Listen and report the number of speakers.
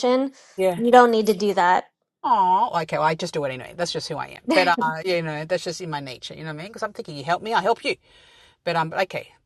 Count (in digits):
2